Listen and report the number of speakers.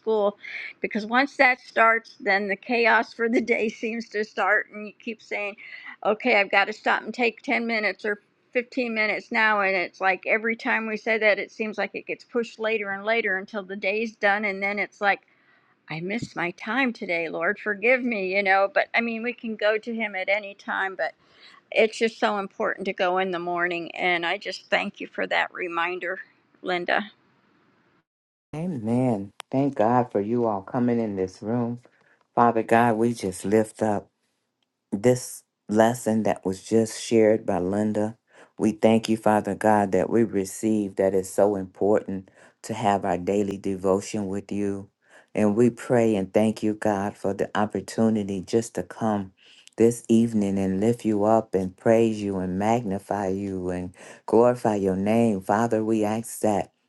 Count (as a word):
two